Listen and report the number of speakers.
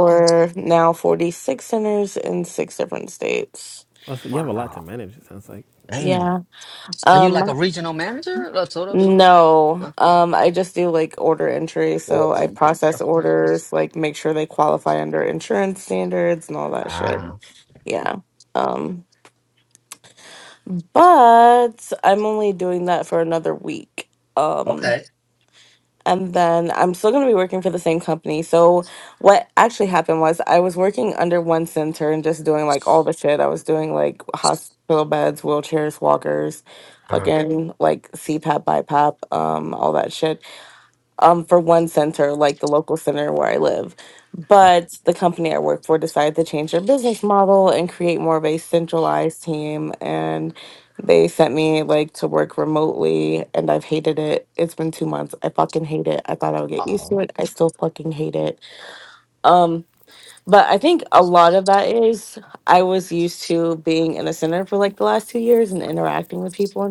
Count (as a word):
three